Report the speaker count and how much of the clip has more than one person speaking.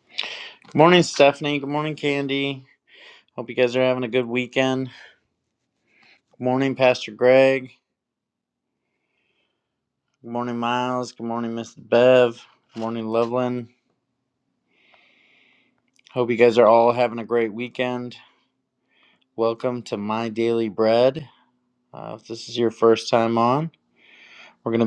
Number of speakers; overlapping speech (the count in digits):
1, no overlap